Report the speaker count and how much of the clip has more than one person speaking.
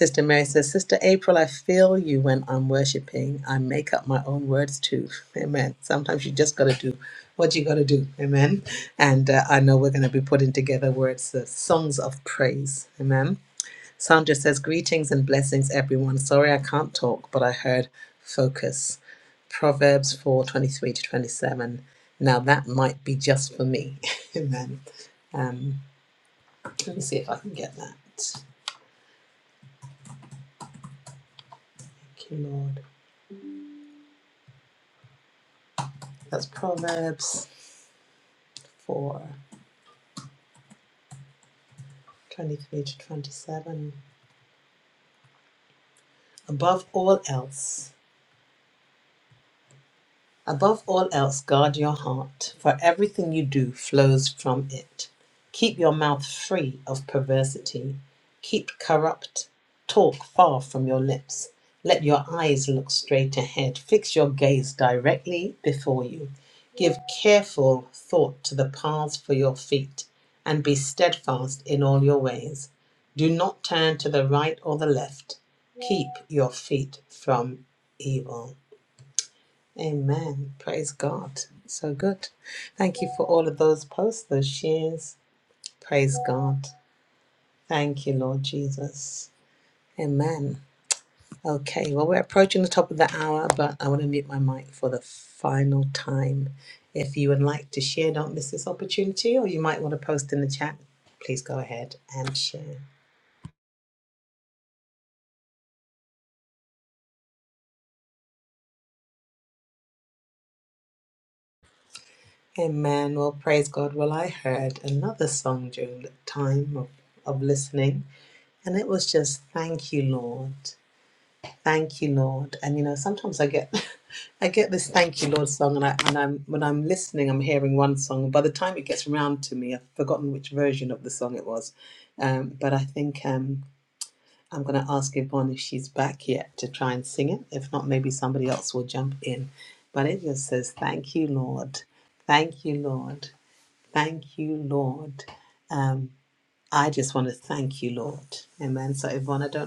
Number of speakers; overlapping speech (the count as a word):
one, no overlap